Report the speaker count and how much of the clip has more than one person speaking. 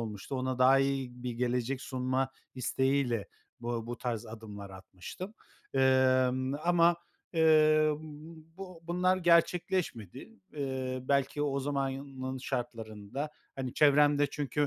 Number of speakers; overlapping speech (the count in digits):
1, no overlap